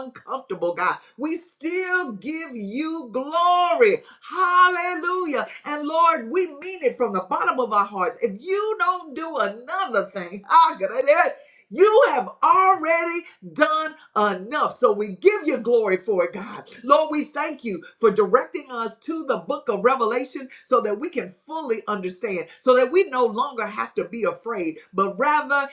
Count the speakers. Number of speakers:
one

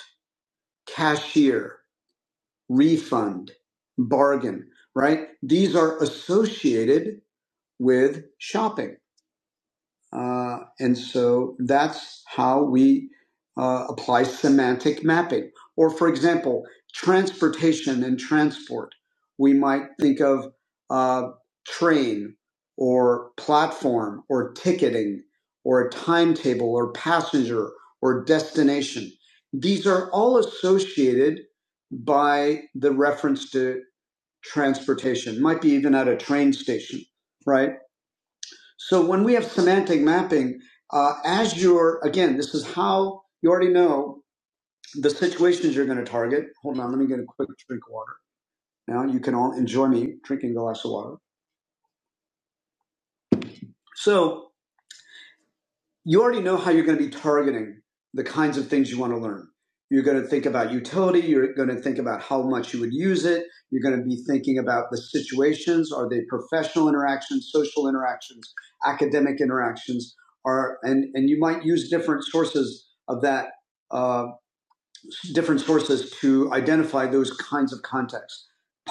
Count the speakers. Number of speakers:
one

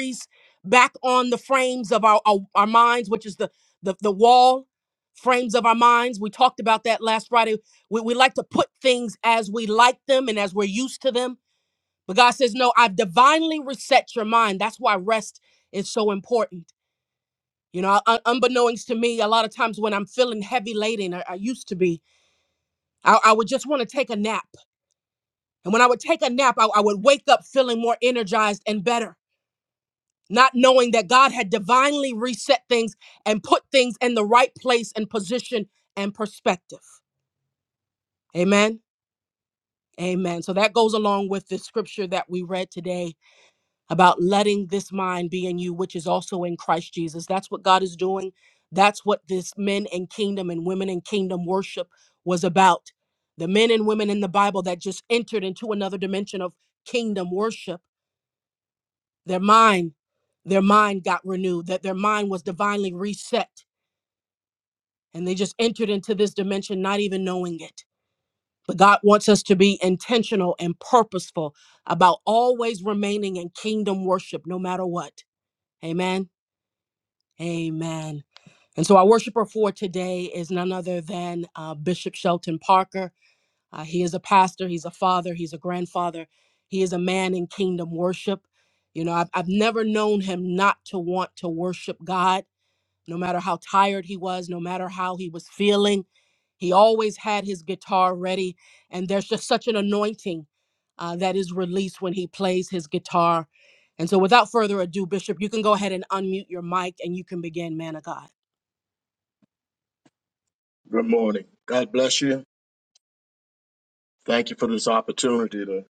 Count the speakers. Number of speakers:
two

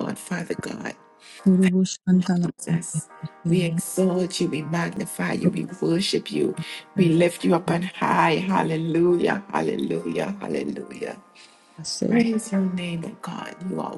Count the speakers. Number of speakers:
two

